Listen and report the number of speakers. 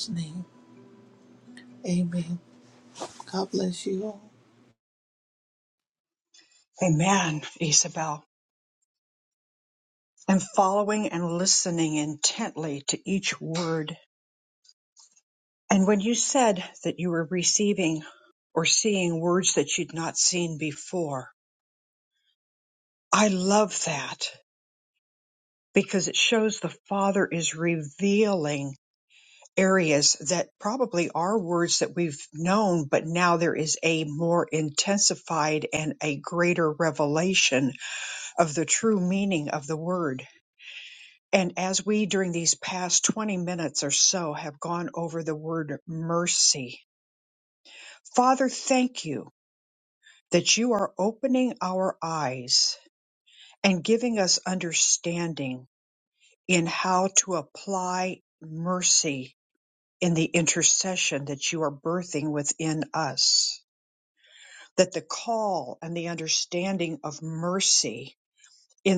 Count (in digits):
2